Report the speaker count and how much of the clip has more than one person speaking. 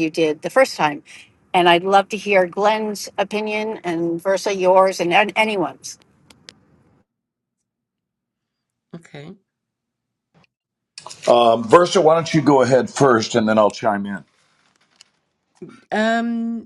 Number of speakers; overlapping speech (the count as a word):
three, no overlap